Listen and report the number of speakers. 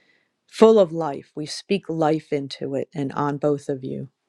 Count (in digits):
1